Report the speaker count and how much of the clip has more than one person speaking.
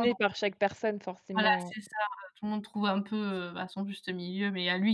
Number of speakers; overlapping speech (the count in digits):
2, about 11%